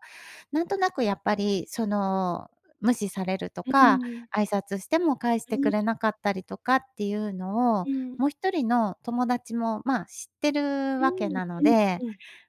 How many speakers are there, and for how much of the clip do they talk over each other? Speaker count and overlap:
2, about 15%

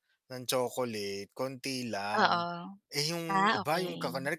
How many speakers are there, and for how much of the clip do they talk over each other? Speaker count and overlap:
2, about 24%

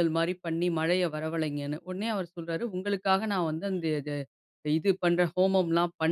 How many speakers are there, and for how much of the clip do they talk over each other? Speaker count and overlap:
1, no overlap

